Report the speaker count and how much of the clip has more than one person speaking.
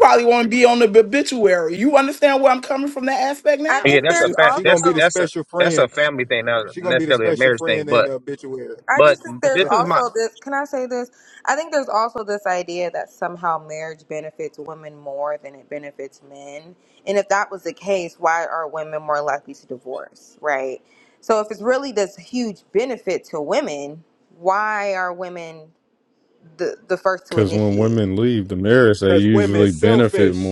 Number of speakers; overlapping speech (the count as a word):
five, about 20%